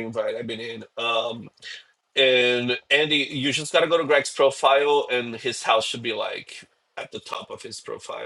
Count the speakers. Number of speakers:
1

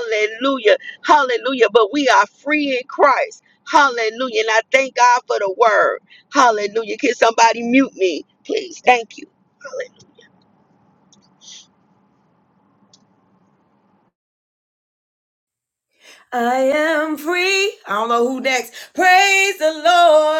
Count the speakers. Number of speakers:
2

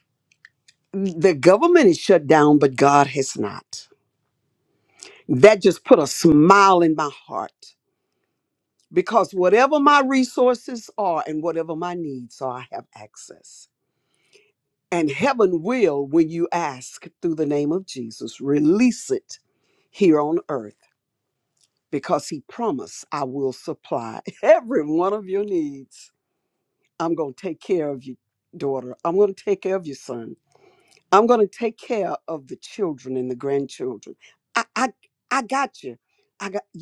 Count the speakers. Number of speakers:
1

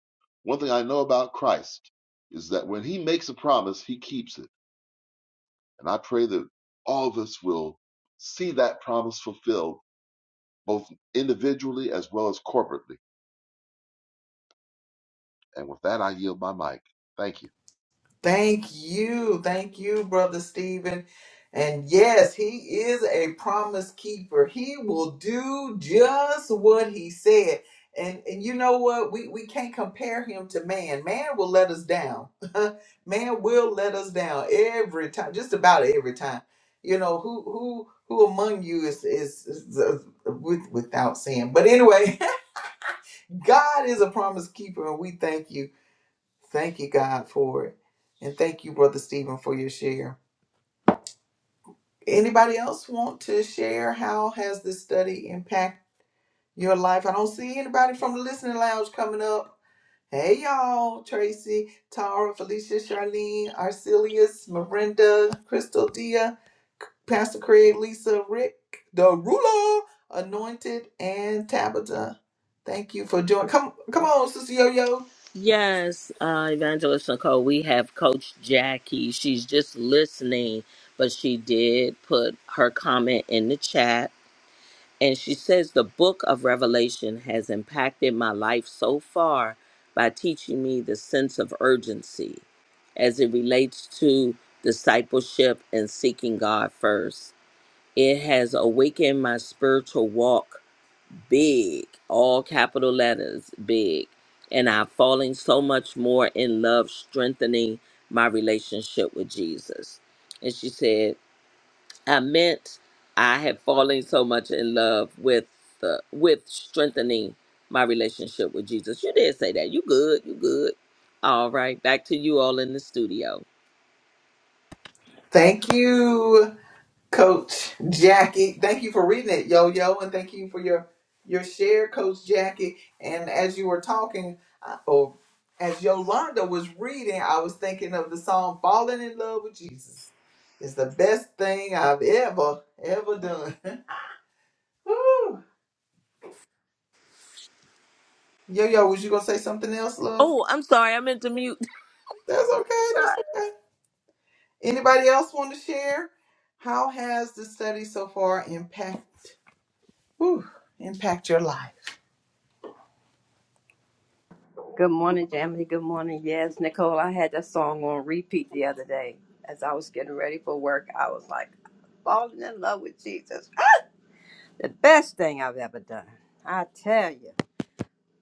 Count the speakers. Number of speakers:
4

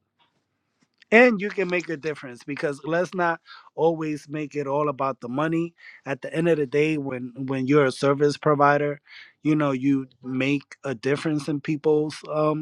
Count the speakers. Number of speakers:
1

